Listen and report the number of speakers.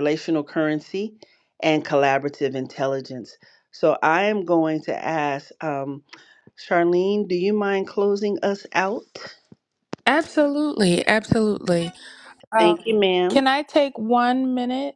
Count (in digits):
2